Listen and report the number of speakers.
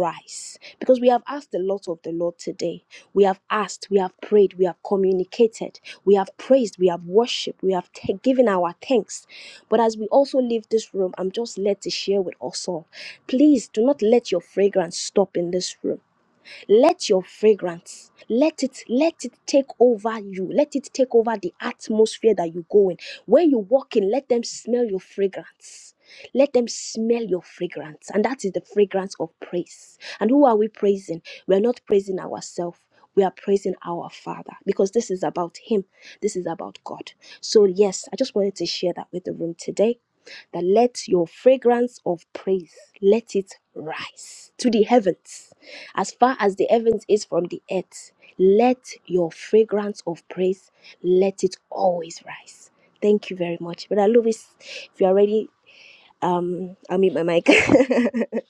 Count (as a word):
one